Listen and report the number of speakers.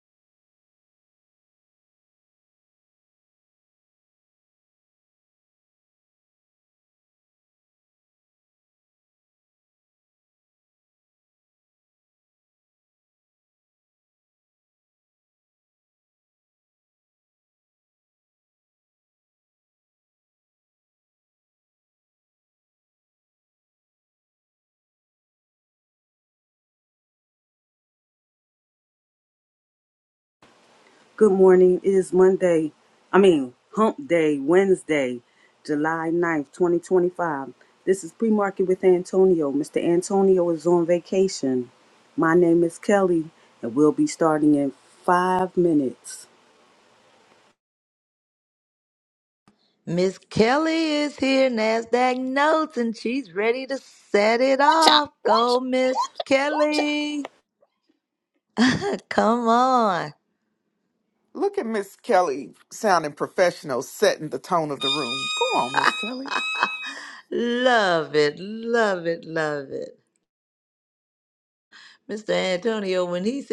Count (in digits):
3